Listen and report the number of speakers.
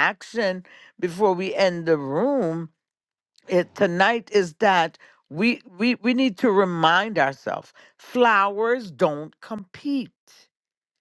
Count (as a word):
one